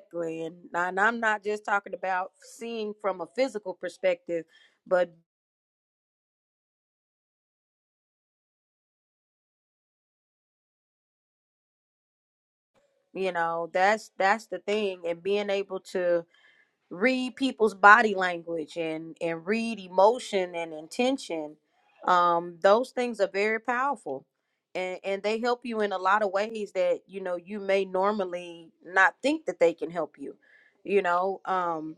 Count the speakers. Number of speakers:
one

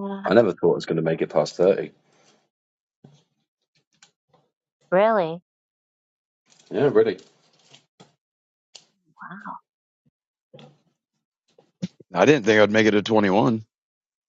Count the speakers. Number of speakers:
three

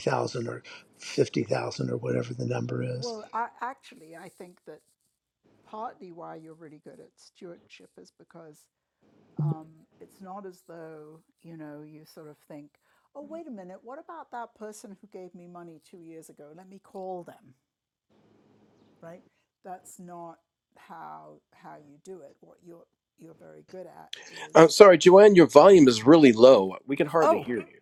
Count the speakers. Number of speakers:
three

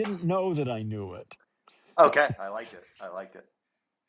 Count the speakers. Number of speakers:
two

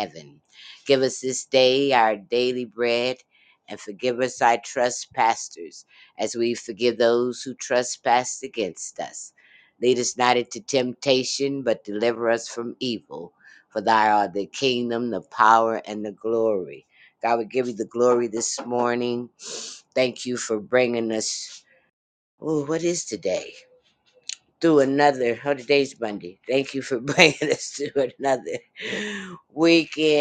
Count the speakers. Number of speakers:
one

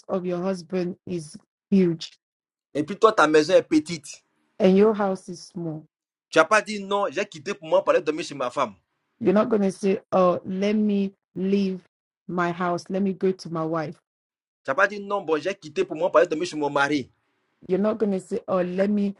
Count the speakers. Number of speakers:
two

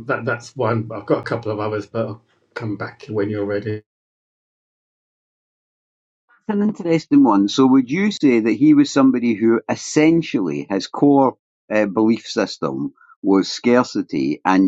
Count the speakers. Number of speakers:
two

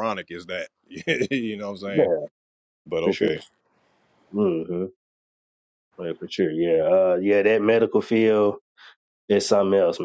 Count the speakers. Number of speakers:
two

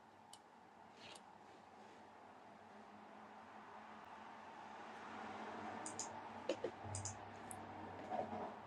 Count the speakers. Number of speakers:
zero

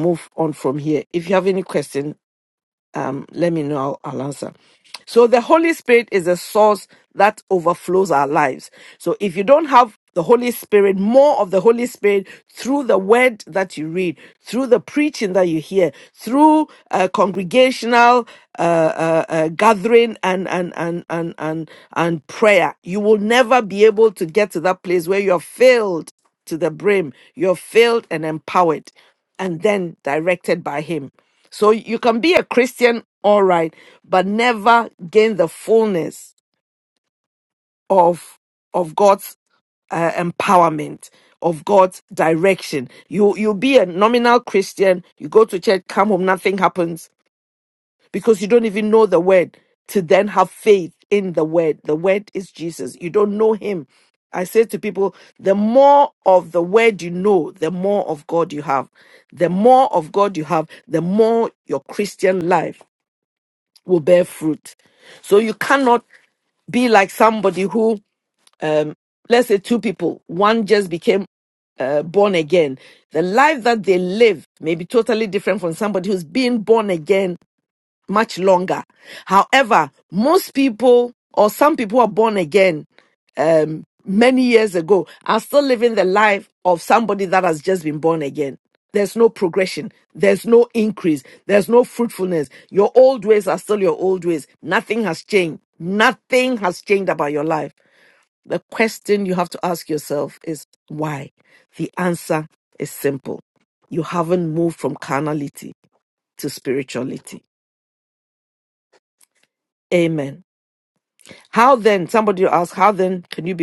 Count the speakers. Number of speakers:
one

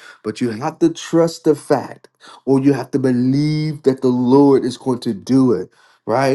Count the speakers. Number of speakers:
one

